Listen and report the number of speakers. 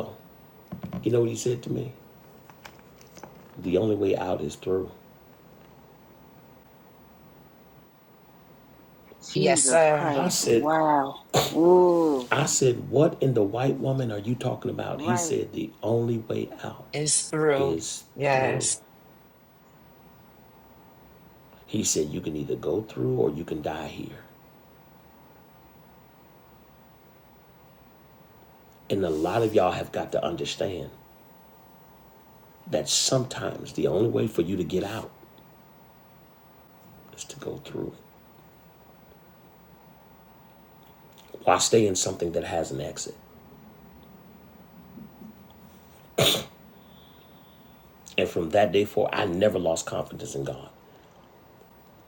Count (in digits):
3